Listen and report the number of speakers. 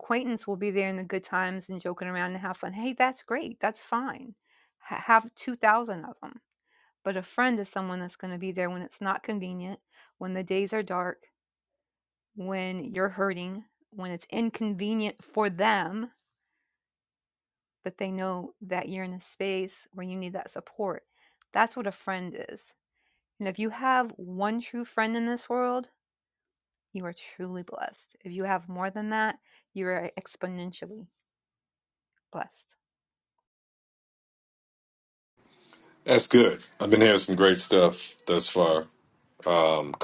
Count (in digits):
2